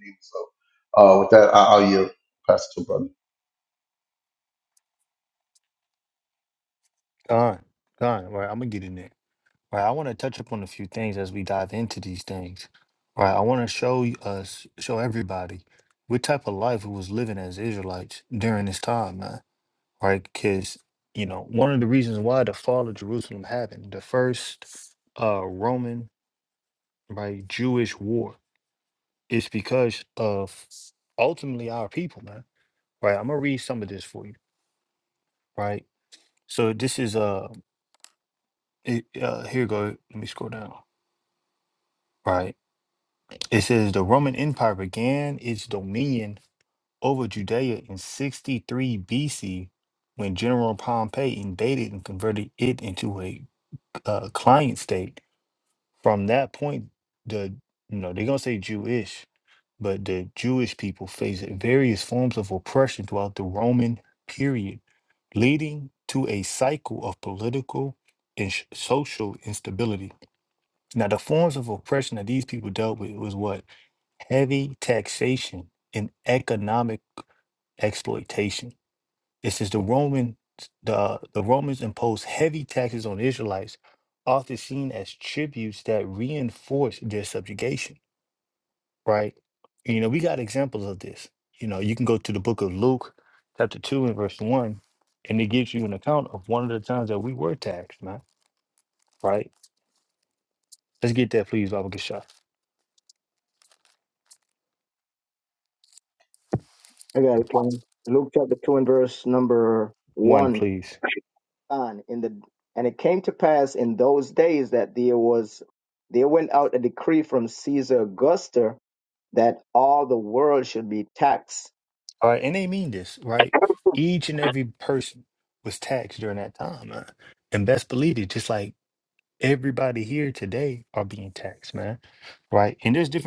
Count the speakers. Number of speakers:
three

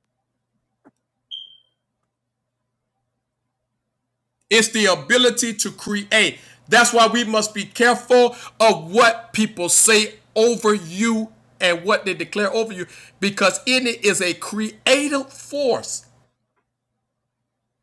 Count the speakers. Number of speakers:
one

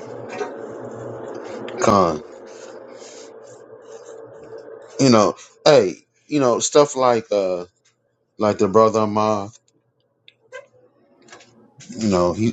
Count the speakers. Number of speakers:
one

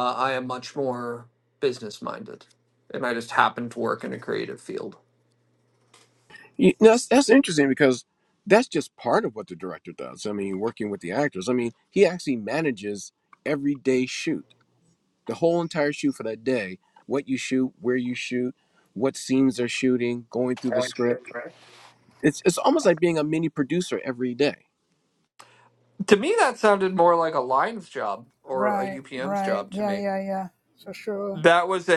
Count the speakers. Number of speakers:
three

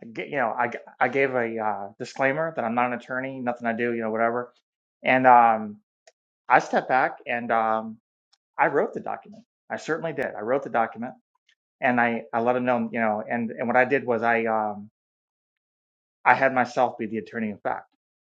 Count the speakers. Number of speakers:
one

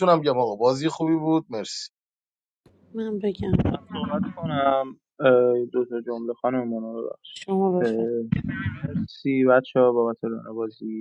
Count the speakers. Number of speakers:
three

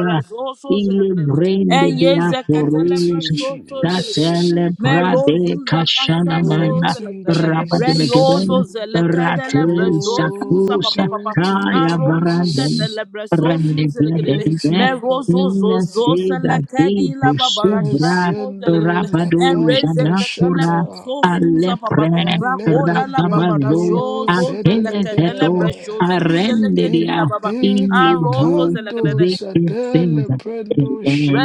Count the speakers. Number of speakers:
three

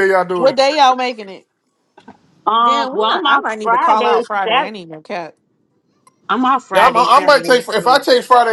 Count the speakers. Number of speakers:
three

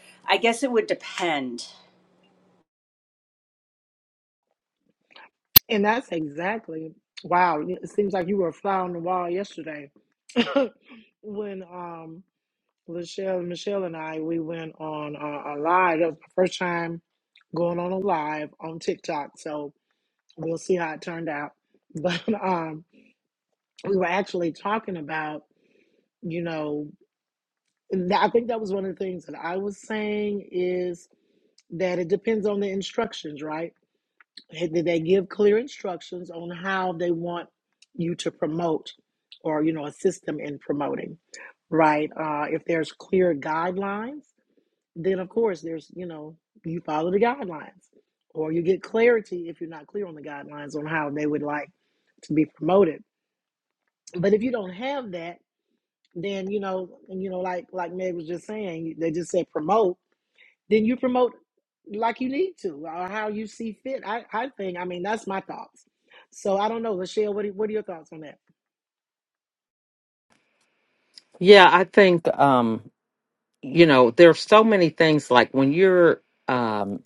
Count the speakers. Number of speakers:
three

